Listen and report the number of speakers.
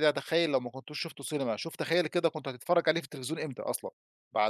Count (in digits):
1